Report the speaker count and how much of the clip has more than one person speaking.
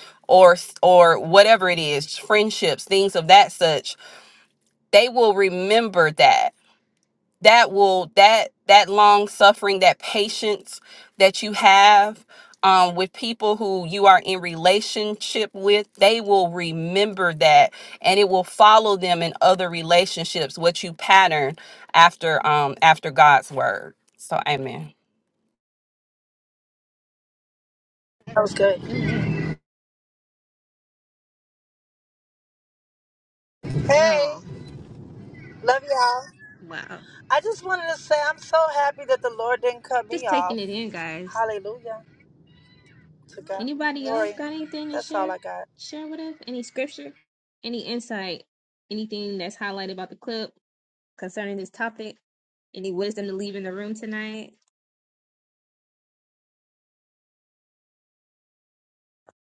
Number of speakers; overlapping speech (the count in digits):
3, about 3%